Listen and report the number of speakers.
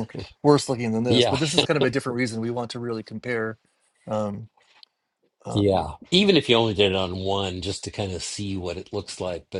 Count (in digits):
2